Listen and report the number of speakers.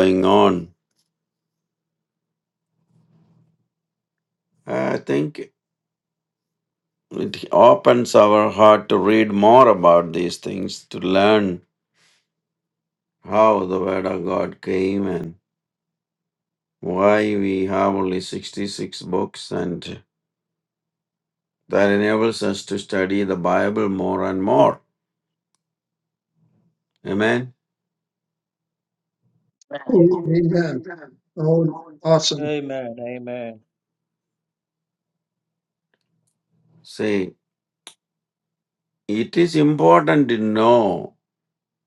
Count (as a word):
three